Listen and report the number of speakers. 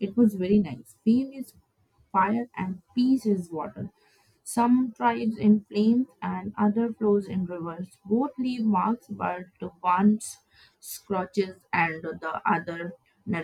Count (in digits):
1